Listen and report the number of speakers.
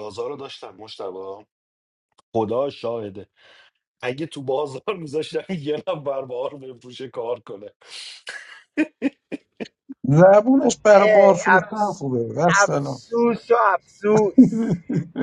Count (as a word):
three